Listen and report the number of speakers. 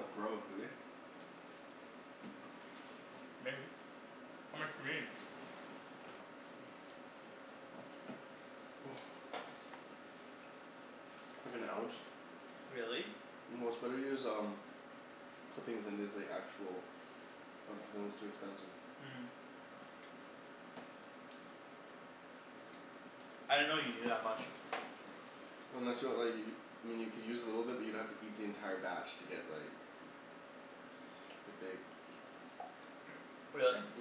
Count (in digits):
2